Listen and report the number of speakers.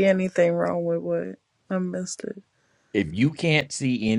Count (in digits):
2